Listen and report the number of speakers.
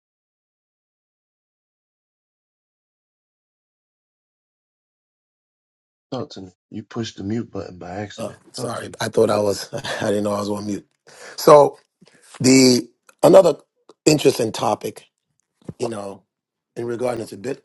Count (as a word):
two